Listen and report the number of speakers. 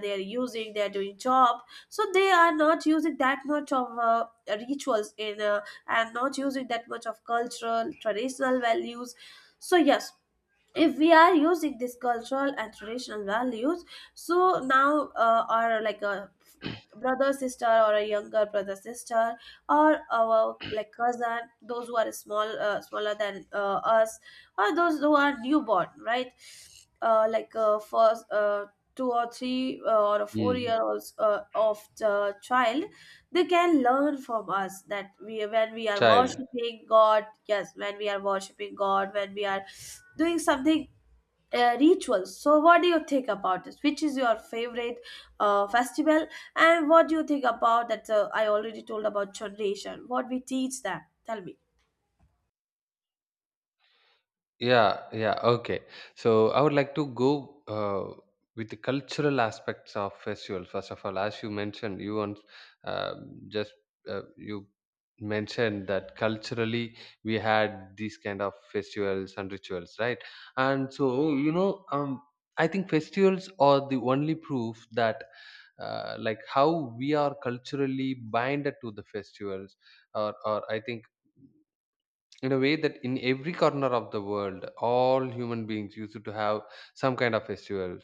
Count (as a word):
two